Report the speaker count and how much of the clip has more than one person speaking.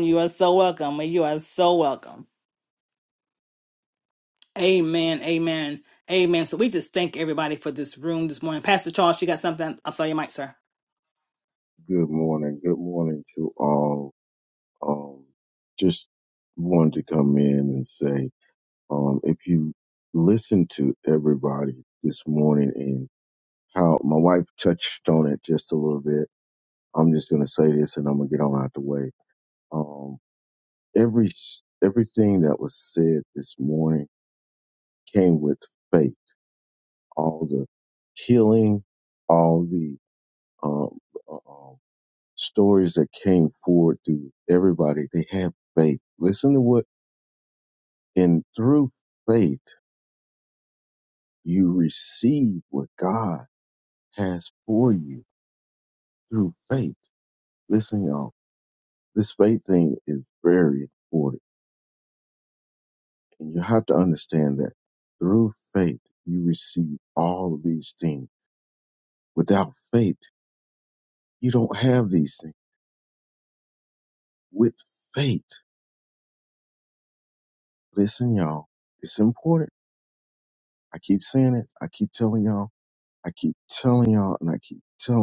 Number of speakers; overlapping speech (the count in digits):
2, no overlap